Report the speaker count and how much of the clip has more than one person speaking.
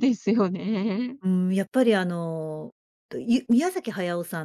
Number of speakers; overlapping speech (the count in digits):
2, no overlap